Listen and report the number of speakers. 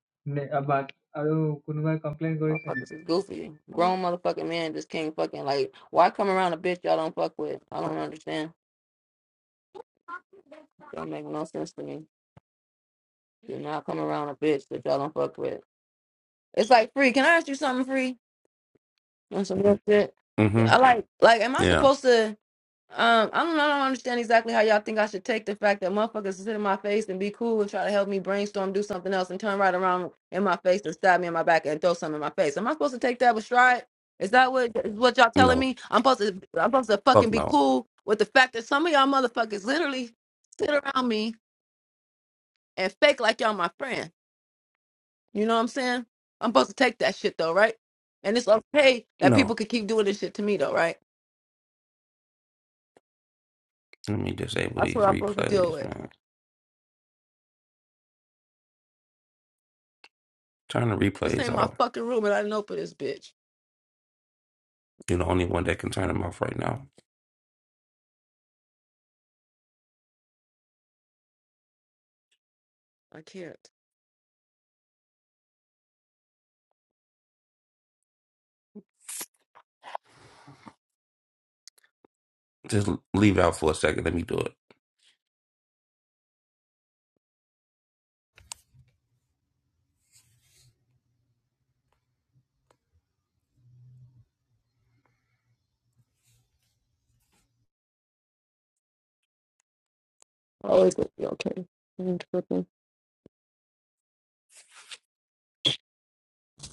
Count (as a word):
three